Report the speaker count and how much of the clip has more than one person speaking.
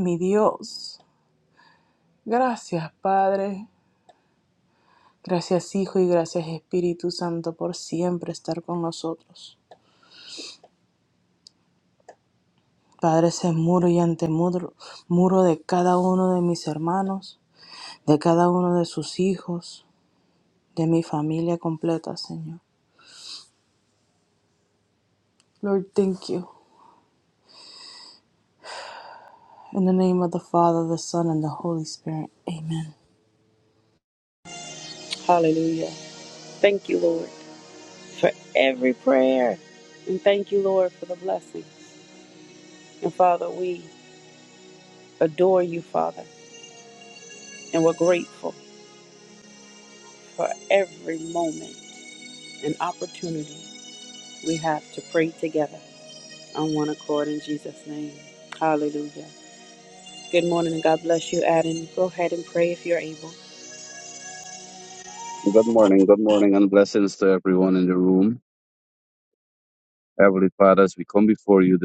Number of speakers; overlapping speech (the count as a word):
three, no overlap